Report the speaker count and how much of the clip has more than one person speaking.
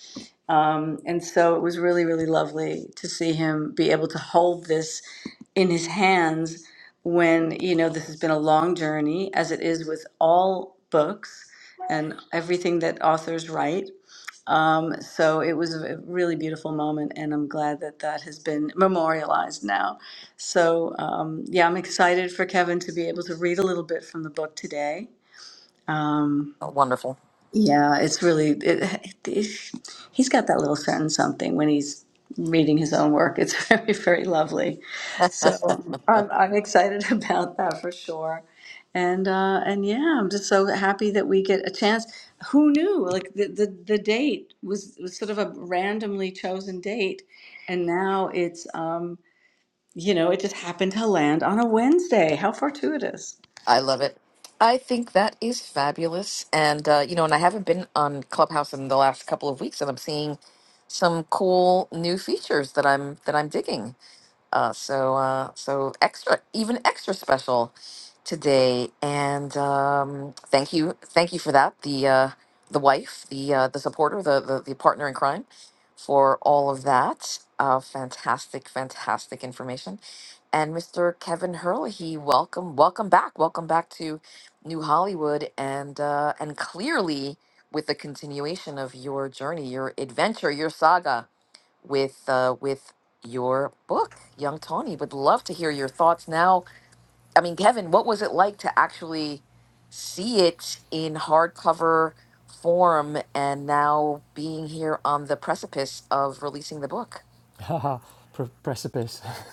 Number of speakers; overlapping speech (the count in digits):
3, no overlap